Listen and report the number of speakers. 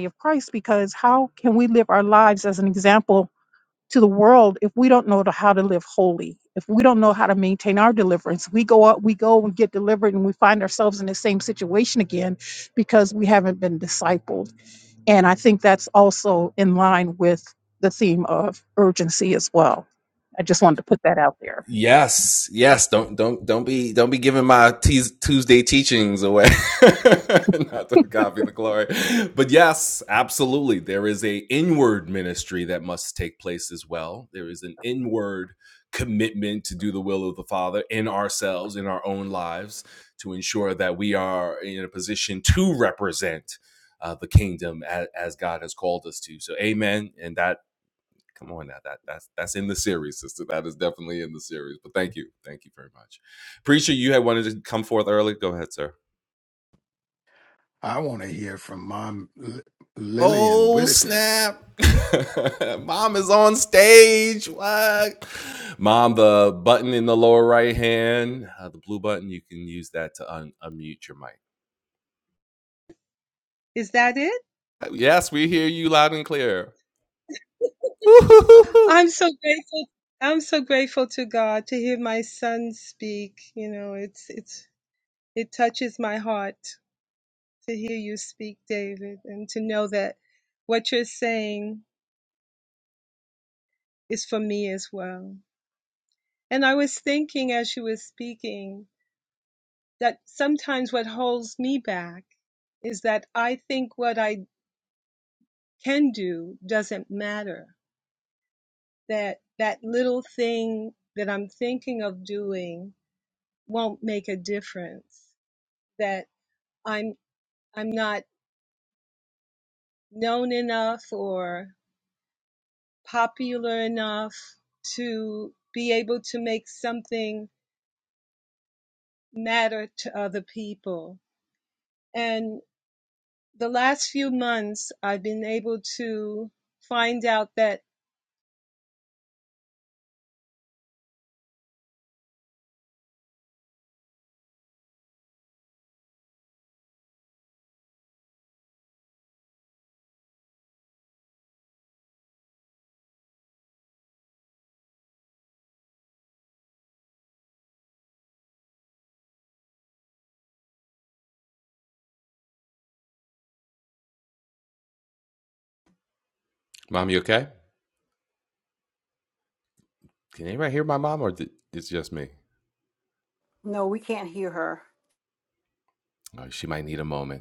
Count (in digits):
5